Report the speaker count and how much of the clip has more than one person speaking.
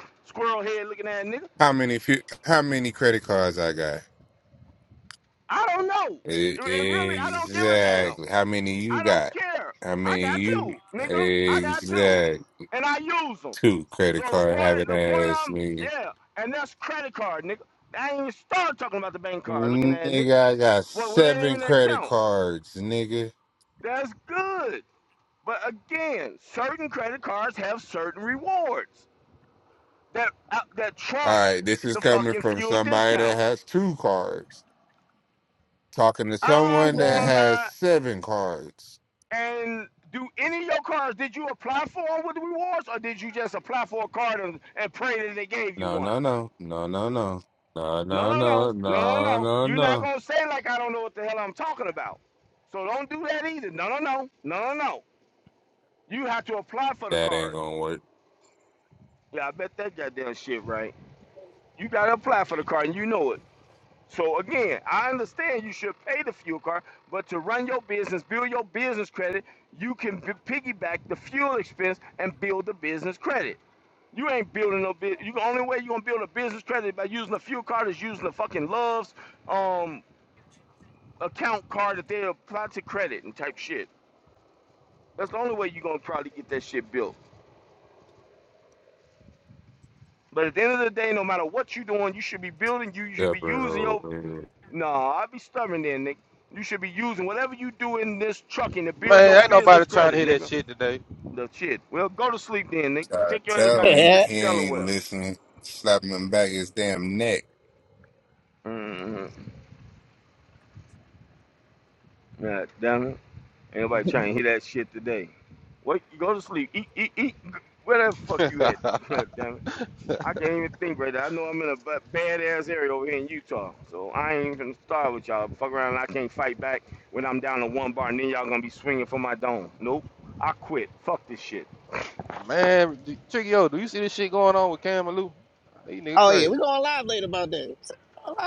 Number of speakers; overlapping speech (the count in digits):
4, about 13%